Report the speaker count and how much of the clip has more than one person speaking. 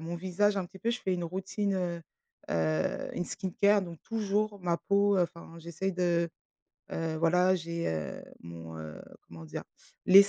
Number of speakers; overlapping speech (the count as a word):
one, no overlap